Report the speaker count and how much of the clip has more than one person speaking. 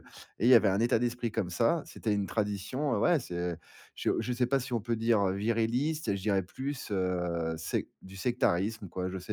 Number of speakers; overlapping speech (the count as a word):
one, no overlap